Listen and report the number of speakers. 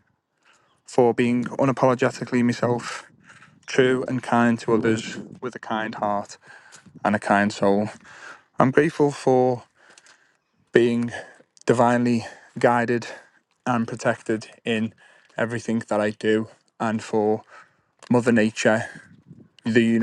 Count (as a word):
one